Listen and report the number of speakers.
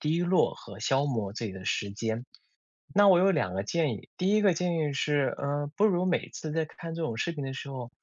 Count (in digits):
1